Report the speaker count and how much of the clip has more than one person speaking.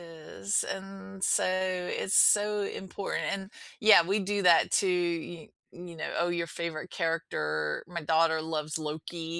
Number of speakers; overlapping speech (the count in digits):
1, no overlap